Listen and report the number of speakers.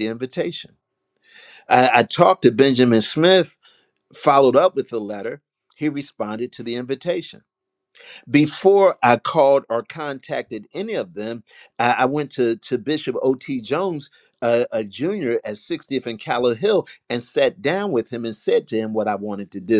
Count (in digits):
1